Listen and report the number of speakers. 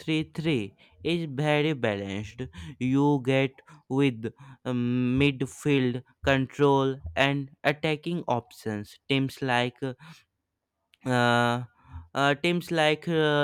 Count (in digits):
1